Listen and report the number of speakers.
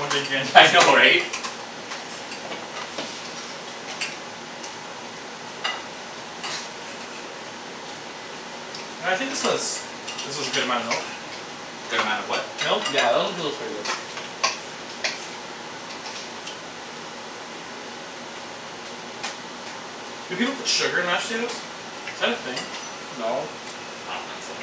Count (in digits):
3